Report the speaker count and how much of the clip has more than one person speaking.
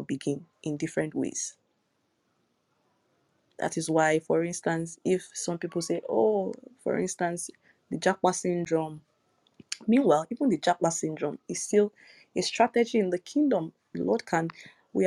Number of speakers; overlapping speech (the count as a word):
one, no overlap